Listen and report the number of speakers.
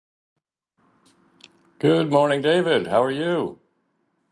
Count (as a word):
one